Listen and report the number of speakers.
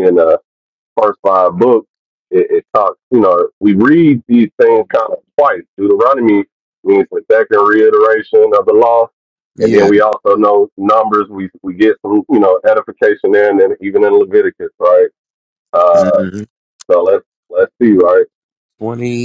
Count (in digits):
2